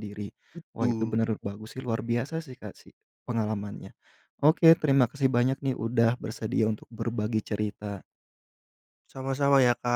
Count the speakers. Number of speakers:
2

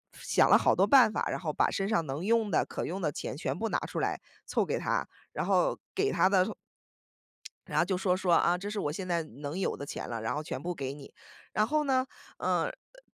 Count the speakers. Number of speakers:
1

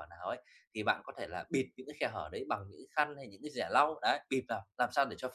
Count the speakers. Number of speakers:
1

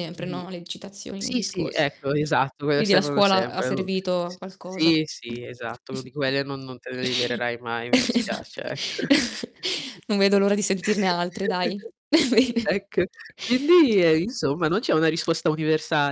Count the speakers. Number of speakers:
2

